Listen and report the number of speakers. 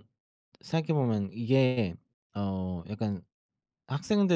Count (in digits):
1